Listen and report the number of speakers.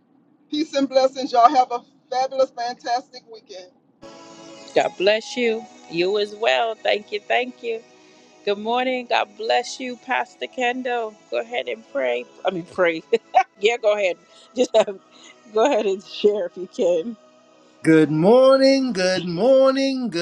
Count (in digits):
3